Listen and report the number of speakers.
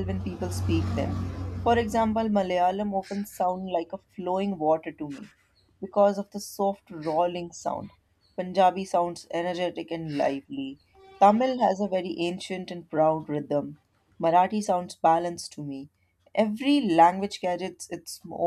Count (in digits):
1